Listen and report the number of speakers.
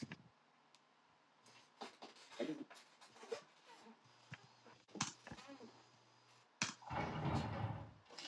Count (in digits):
0